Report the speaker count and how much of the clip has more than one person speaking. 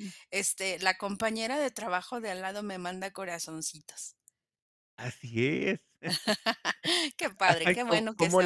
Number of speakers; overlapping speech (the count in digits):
2, about 10%